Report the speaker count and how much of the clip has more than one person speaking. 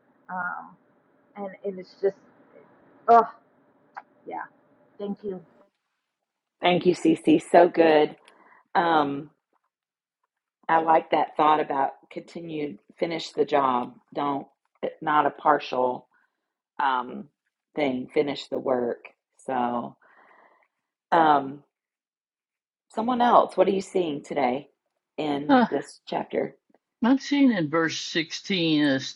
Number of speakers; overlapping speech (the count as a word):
three, about 1%